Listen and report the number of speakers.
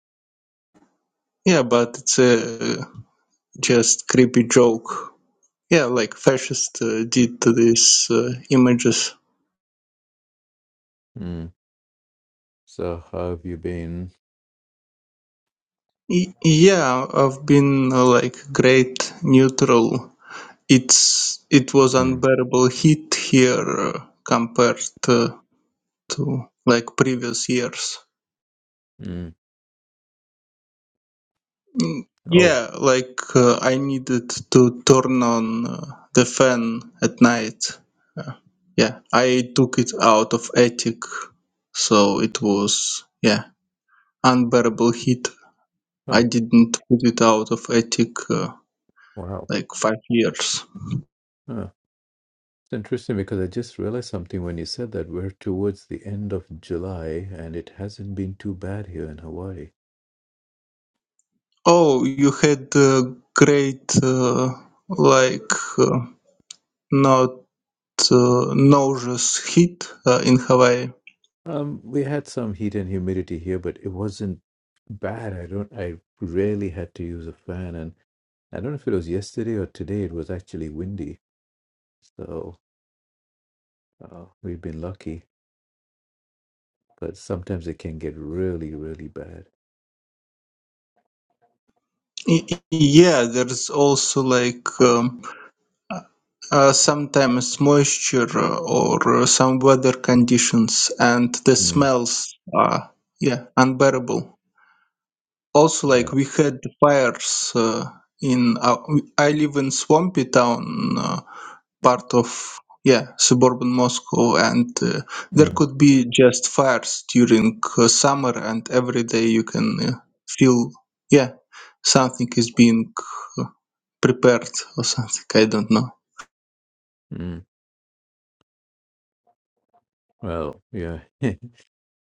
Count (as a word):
two